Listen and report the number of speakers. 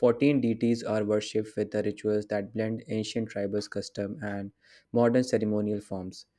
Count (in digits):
1